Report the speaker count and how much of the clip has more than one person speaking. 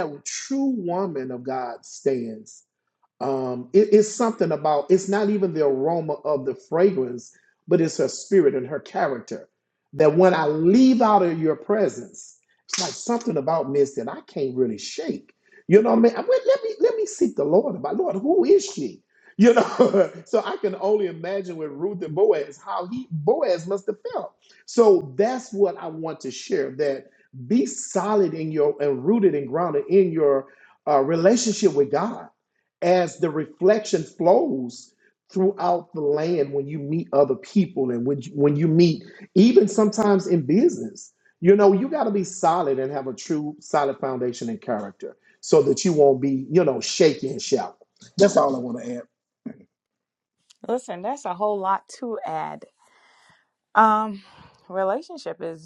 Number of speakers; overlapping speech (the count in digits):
2, no overlap